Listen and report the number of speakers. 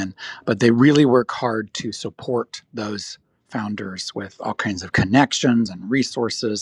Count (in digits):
1